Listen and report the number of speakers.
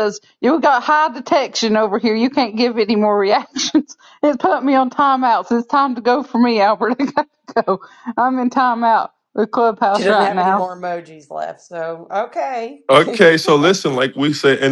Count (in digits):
3